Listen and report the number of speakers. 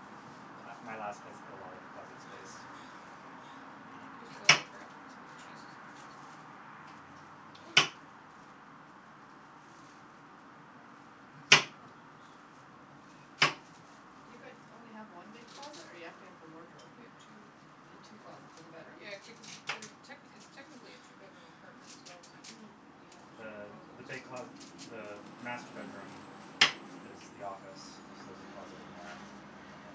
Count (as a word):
three